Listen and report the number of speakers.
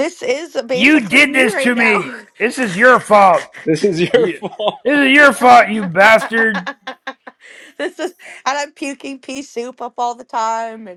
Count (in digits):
3